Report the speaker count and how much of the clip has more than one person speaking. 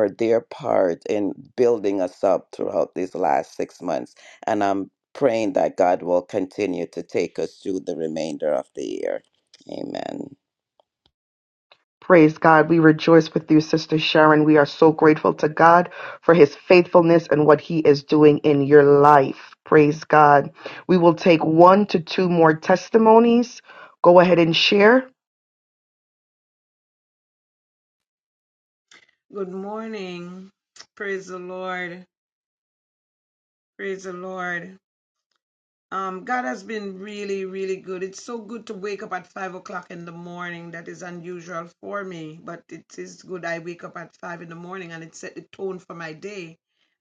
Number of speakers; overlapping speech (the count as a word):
three, no overlap